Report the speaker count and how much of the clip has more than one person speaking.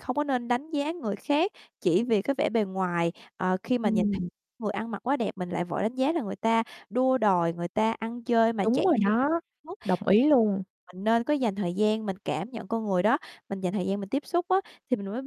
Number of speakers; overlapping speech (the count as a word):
two, about 6%